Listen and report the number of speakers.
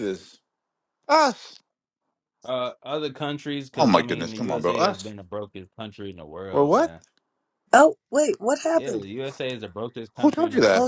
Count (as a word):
three